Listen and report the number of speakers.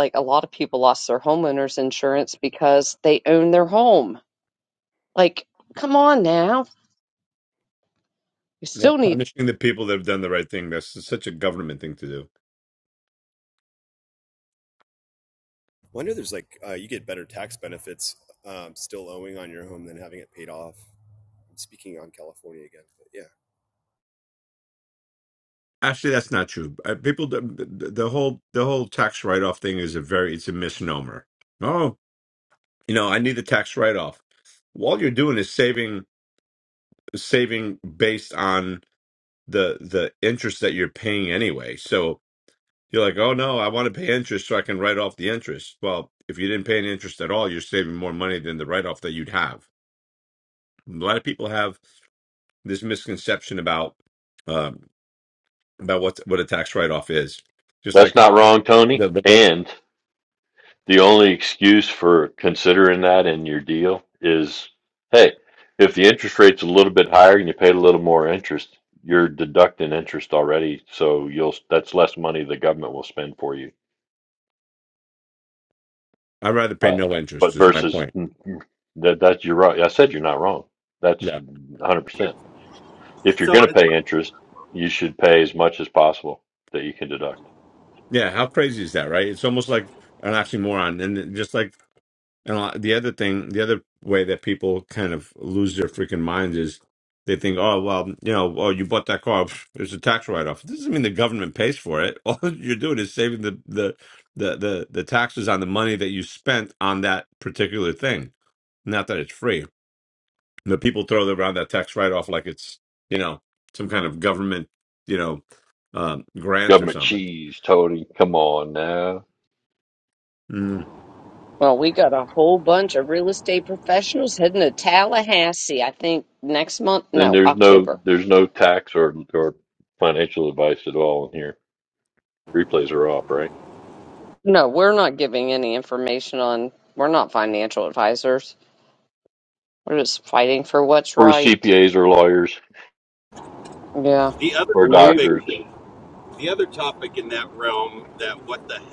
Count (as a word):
five